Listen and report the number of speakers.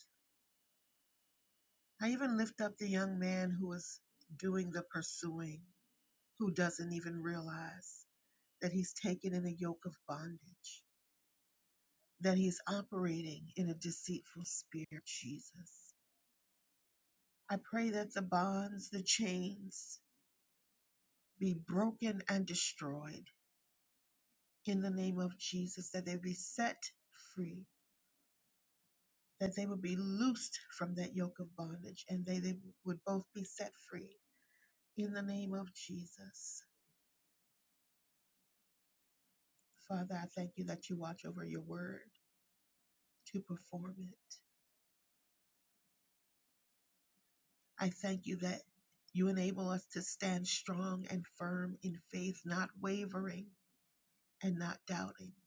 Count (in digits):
1